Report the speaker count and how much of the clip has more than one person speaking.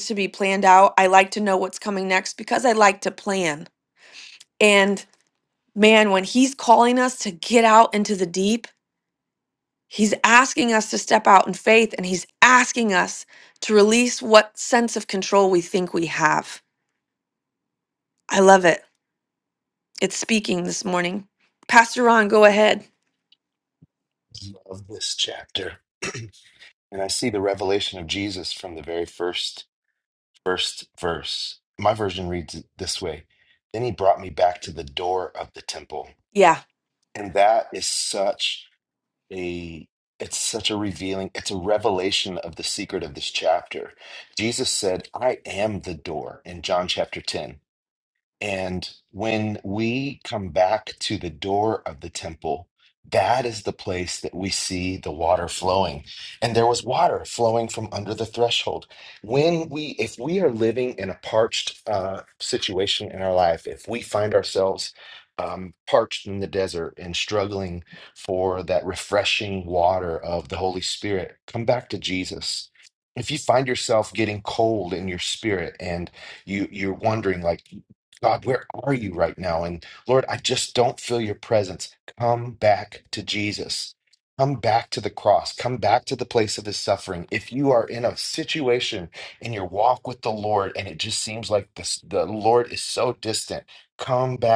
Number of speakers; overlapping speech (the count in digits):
2, no overlap